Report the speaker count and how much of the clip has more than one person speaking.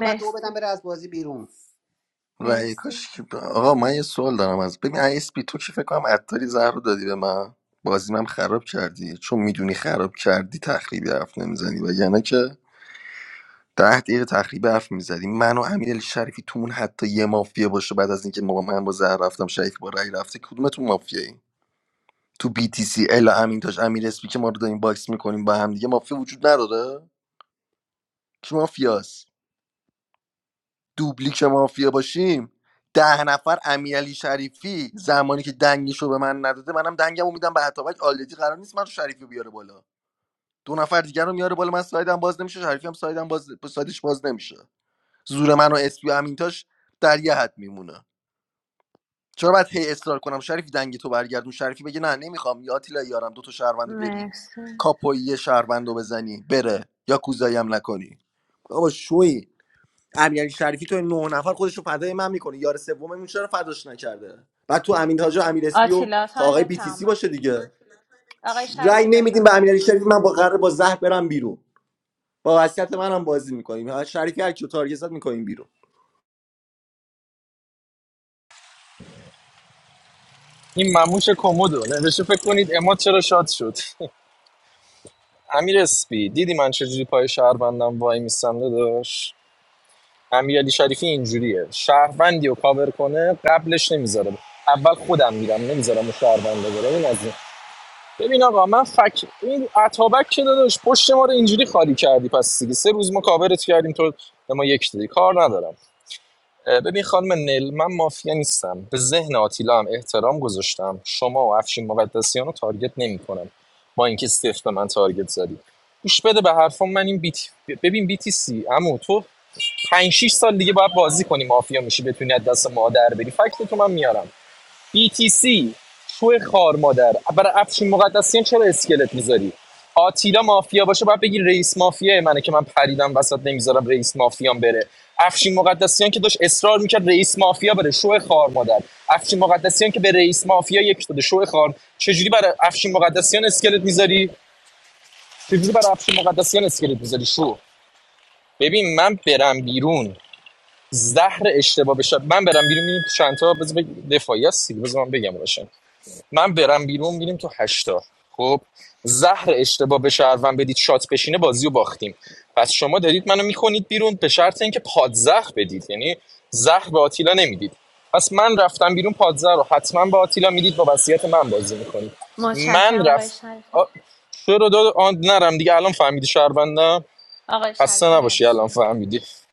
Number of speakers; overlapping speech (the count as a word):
four, about 3%